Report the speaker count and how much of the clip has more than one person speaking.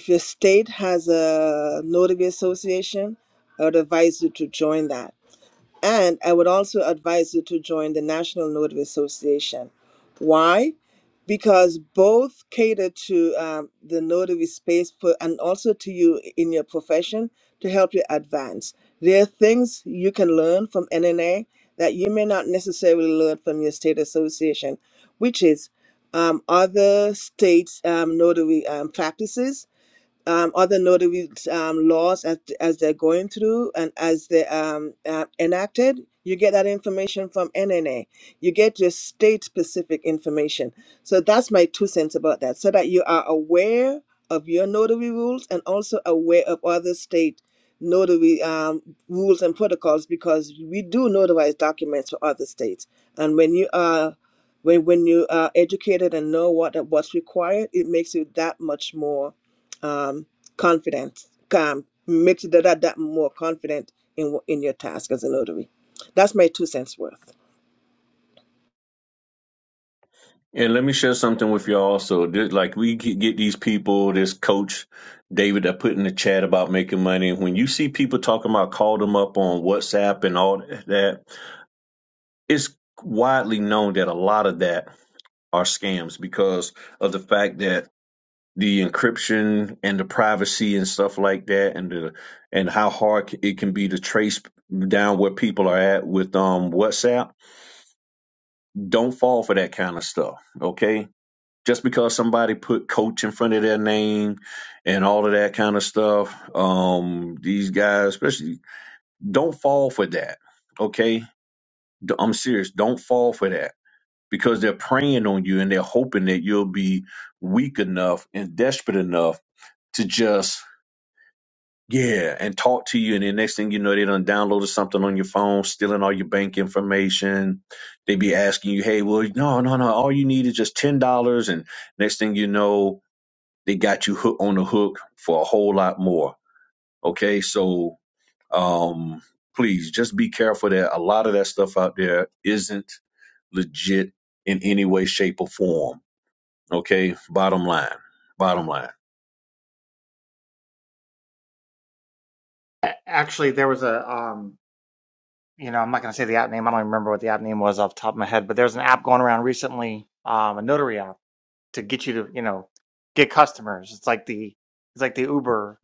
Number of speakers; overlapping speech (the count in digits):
3, no overlap